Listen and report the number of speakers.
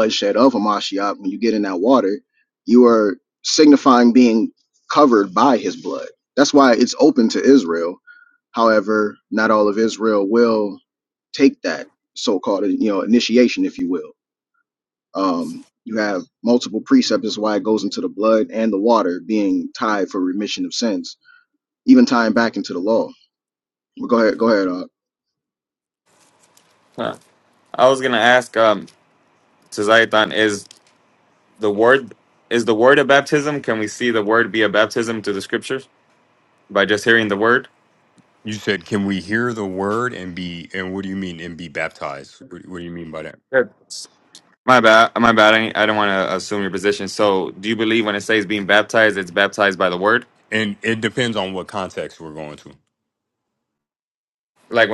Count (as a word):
three